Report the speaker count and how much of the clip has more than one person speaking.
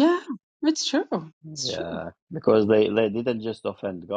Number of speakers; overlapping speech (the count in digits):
2, about 8%